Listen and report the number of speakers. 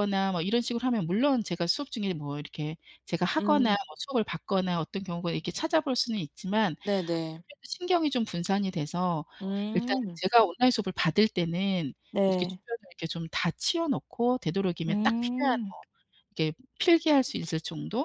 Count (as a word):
two